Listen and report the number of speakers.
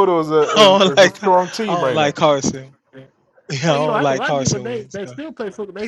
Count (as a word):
three